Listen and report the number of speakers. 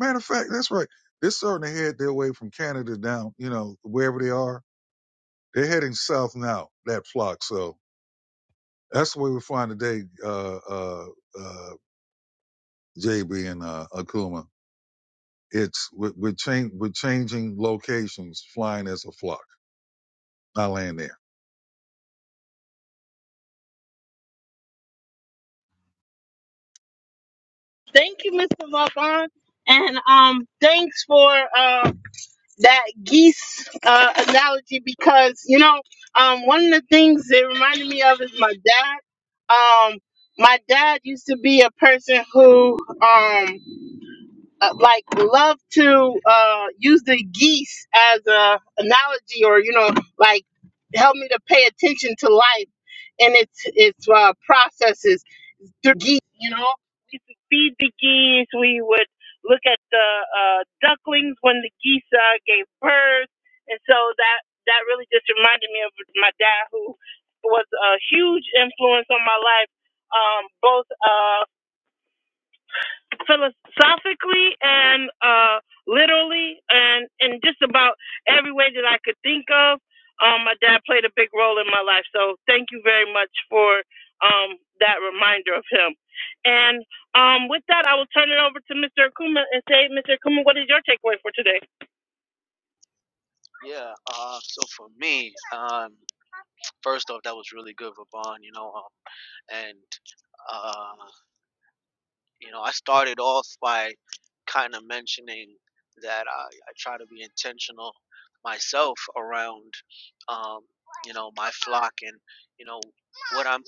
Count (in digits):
3